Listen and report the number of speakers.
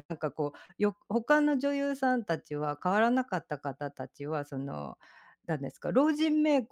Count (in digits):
1